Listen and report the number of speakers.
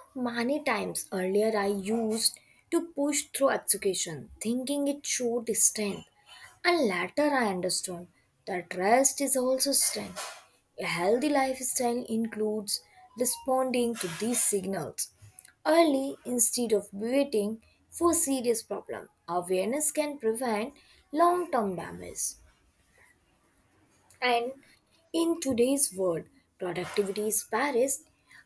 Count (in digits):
1